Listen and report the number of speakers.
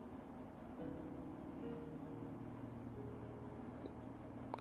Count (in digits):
0